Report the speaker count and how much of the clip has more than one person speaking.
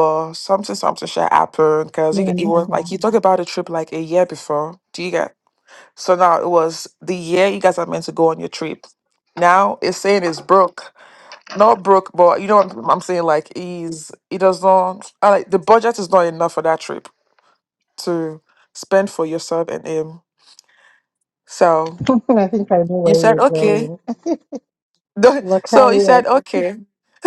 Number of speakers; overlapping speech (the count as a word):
two, about 9%